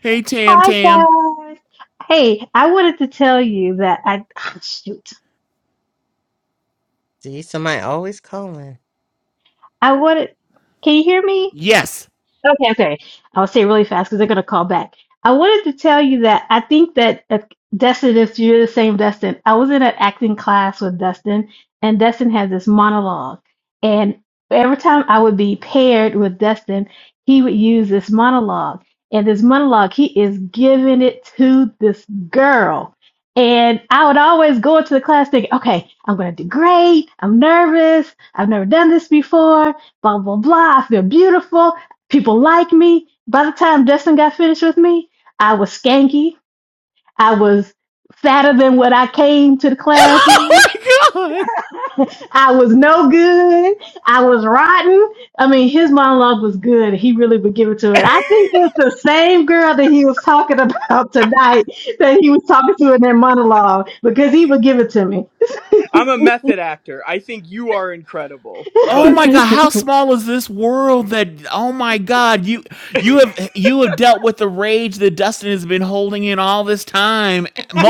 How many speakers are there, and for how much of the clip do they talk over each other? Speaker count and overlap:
four, about 2%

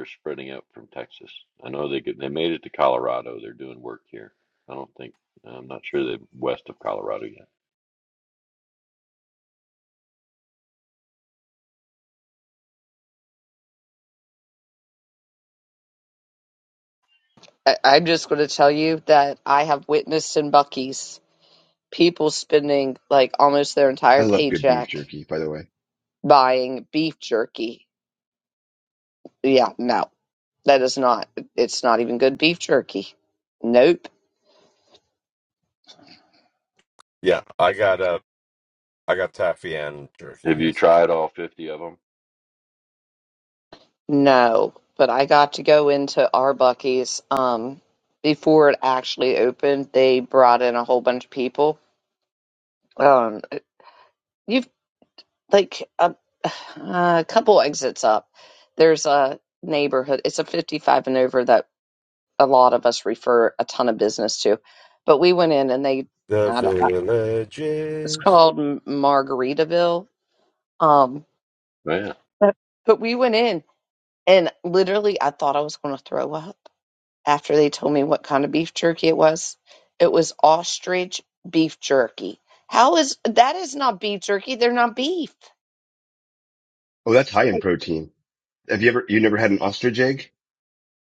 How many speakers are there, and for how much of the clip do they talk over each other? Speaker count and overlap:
four, about 2%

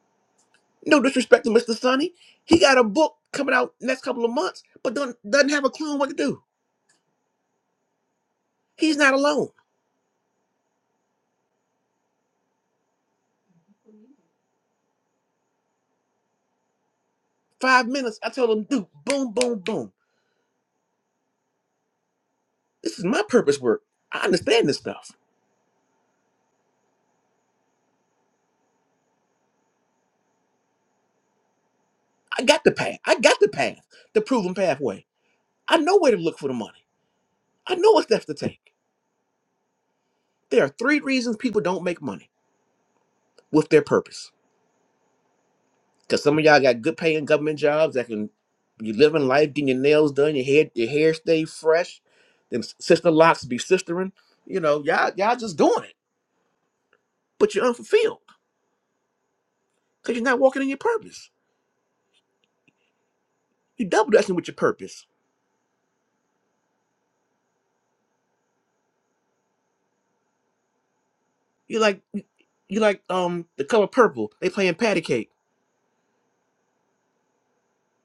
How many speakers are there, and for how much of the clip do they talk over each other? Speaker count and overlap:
one, no overlap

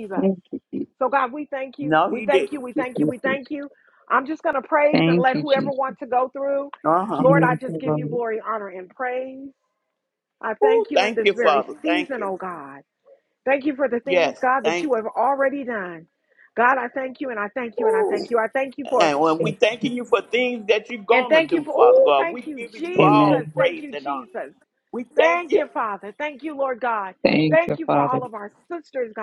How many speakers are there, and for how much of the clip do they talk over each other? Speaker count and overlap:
three, about 37%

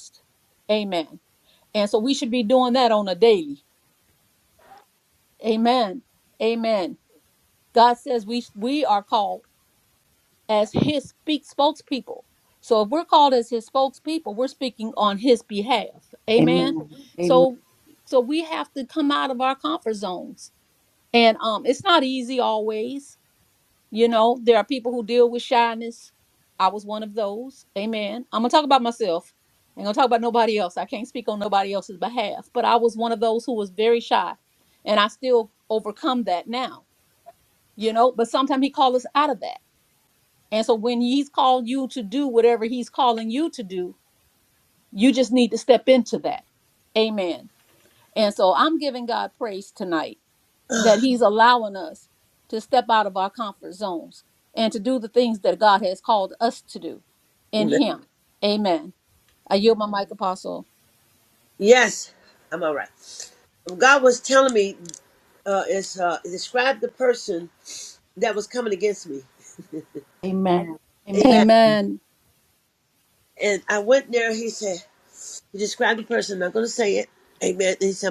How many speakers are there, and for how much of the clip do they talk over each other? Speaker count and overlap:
three, about 2%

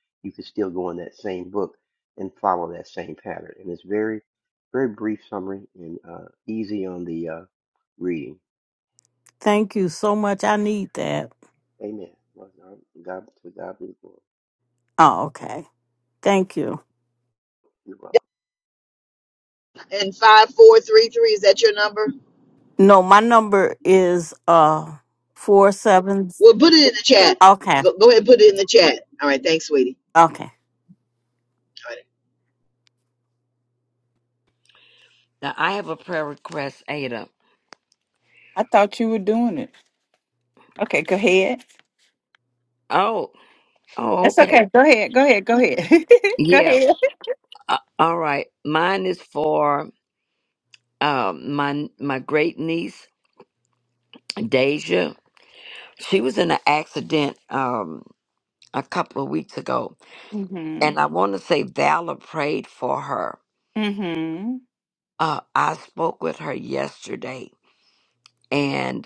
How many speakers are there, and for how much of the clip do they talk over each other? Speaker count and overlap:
five, about 1%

